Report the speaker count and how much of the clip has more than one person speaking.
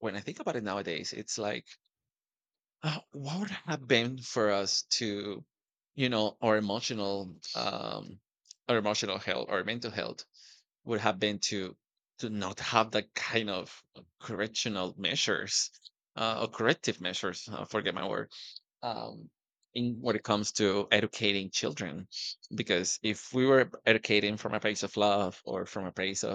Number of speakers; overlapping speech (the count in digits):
1, no overlap